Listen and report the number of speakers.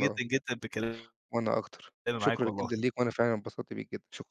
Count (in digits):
2